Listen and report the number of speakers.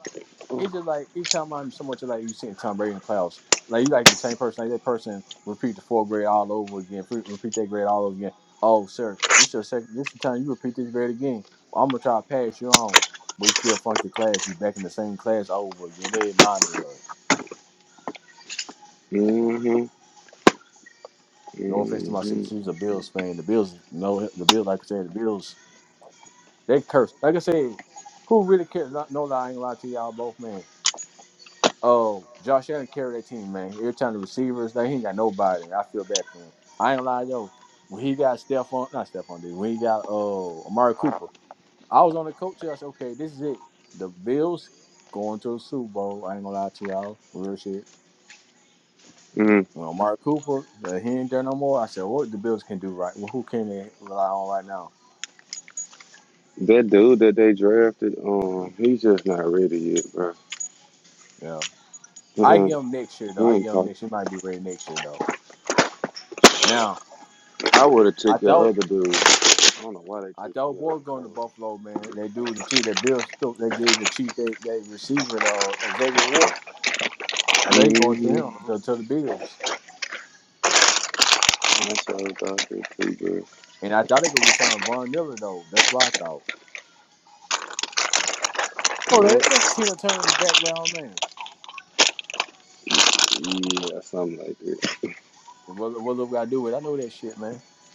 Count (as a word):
two